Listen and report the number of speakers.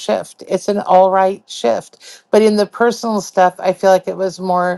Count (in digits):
1